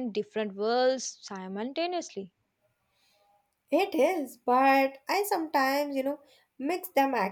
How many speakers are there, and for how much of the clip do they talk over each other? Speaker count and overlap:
2, no overlap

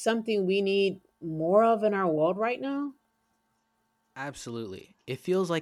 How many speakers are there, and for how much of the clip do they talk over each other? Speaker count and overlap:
2, no overlap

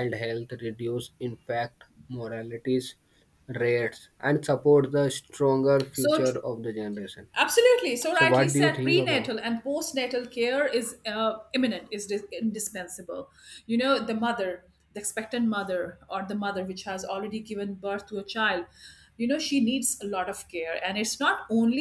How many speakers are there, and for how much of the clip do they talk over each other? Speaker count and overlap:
2, about 7%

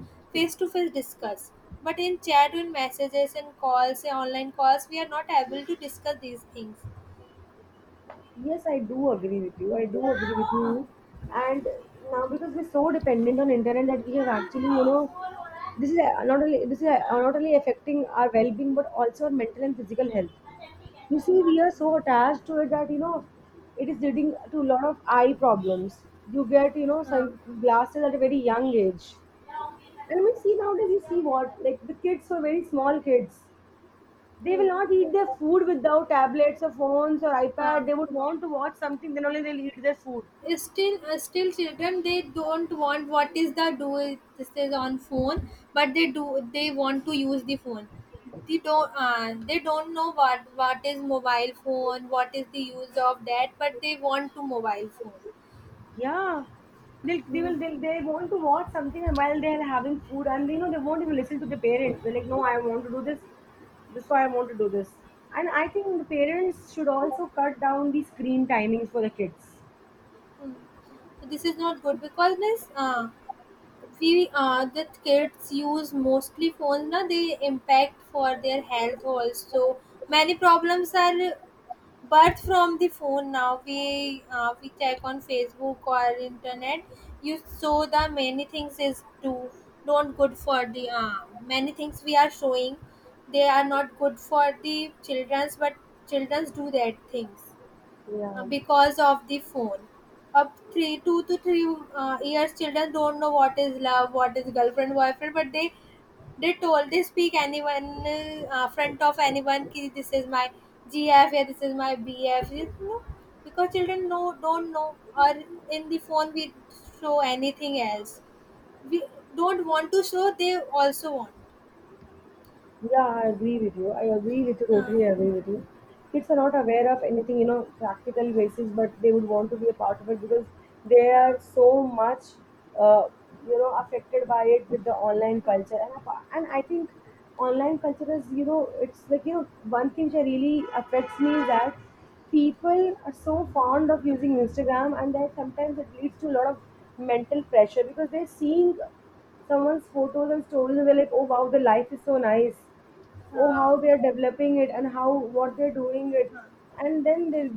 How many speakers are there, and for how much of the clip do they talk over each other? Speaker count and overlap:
2, about 1%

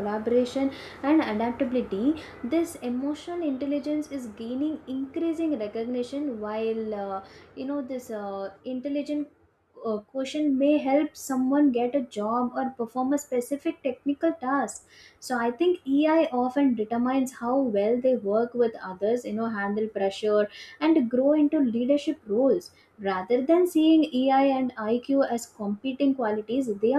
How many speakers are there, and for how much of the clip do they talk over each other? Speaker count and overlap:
1, no overlap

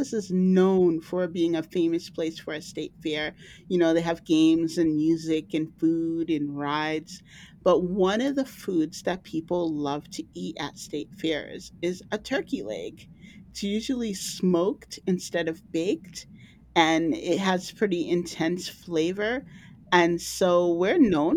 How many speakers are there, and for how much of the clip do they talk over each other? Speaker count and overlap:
1, no overlap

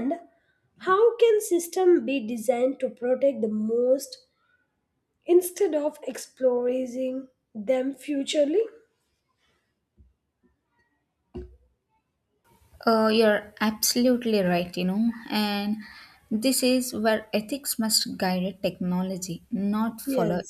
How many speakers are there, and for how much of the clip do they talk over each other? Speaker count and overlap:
2, about 2%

